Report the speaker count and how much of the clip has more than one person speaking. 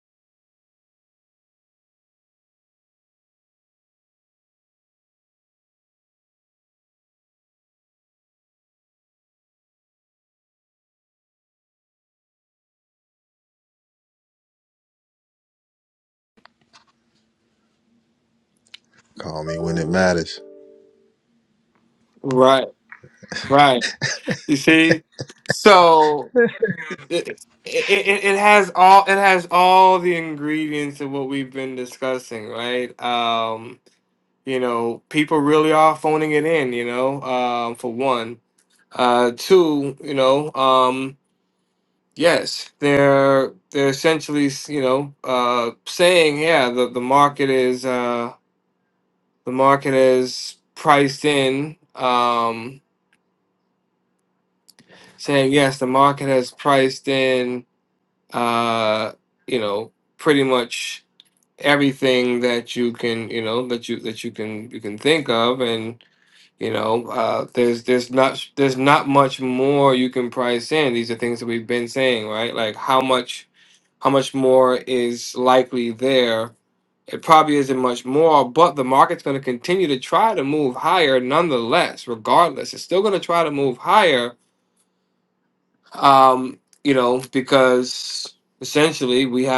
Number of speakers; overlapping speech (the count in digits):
2, no overlap